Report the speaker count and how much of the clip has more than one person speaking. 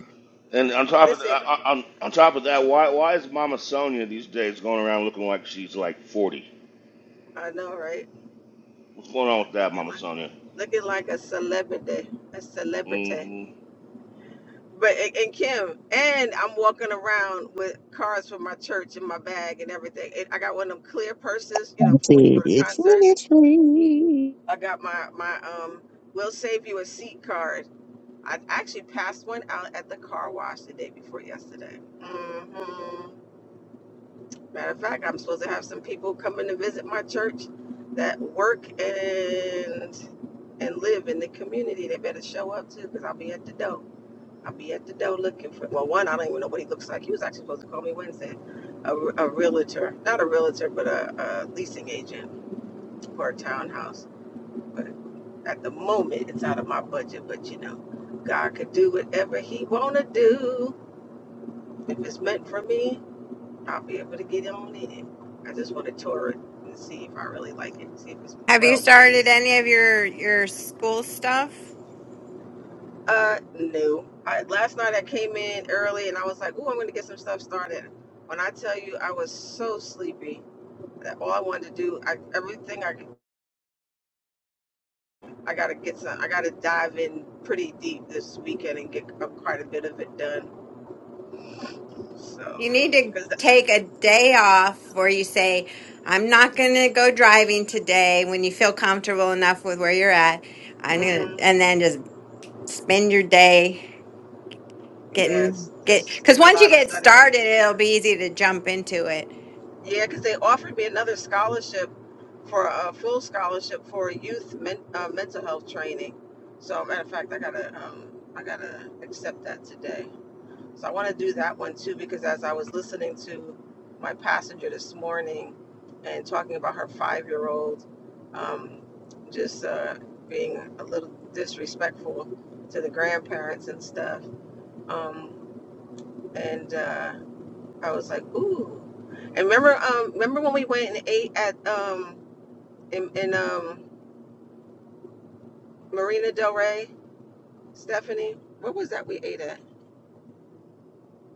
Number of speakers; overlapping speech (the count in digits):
4, about 5%